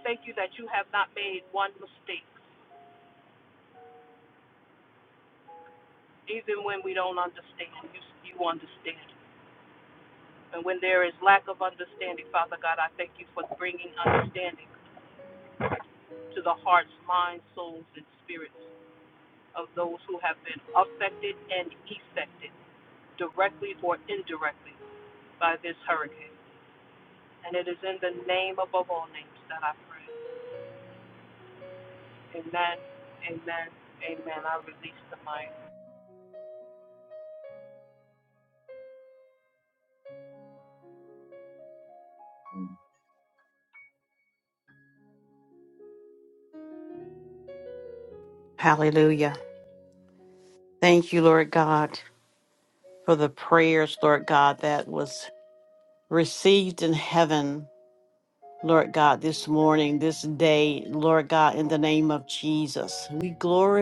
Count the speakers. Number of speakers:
2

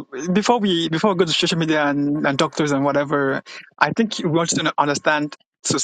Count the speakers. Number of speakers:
1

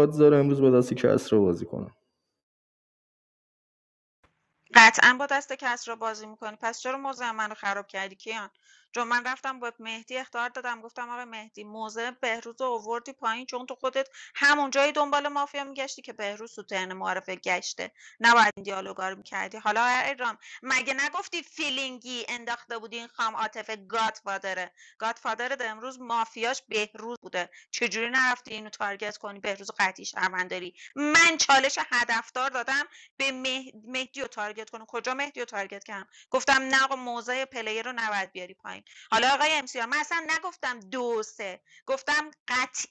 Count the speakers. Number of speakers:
2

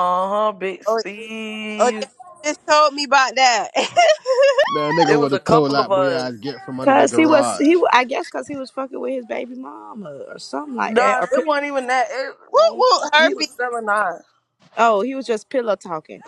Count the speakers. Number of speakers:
4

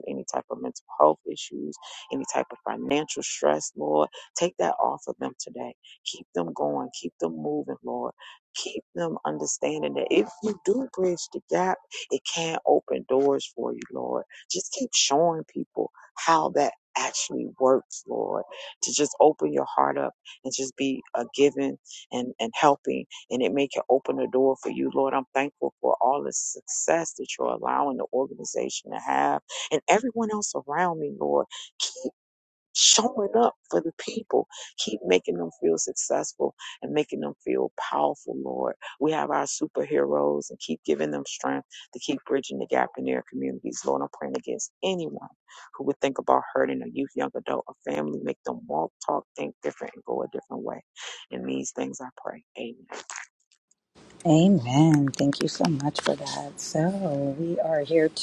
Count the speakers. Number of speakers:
2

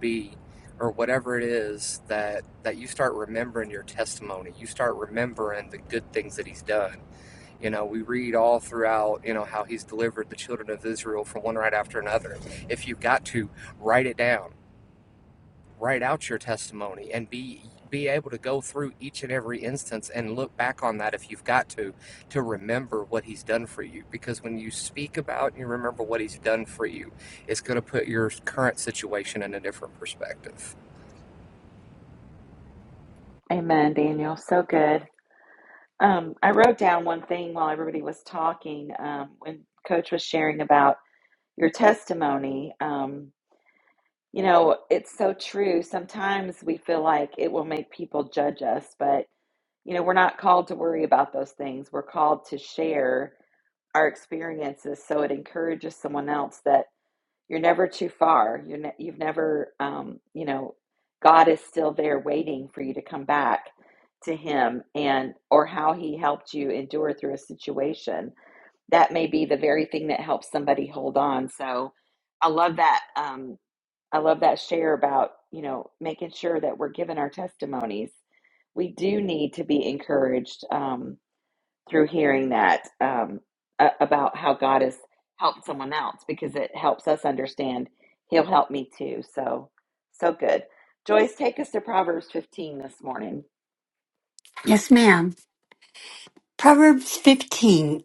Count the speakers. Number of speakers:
3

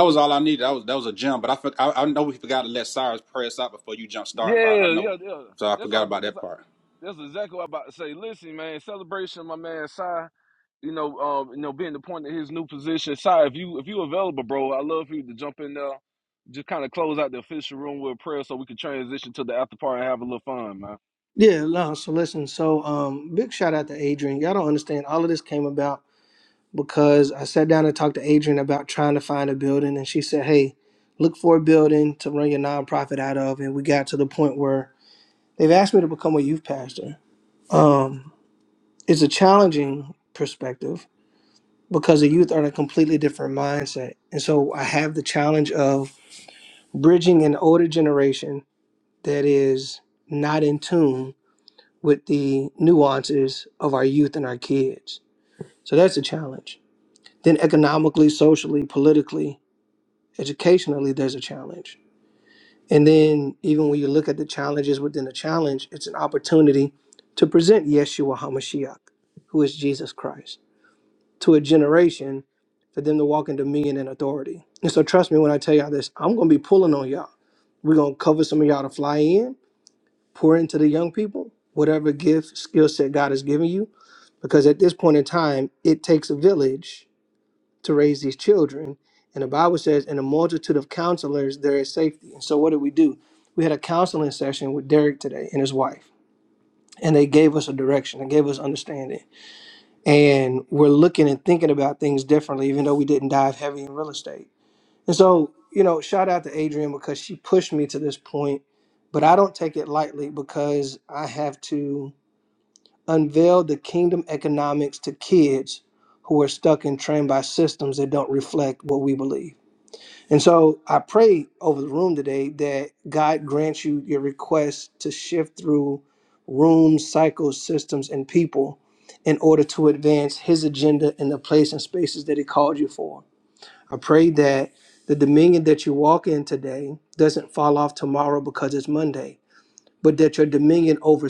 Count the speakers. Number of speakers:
3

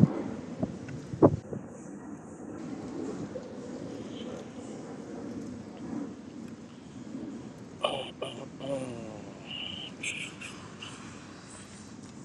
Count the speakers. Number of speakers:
0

